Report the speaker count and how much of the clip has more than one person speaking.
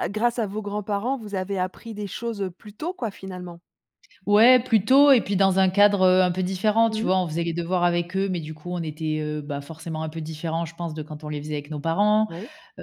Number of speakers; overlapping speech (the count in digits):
2, about 2%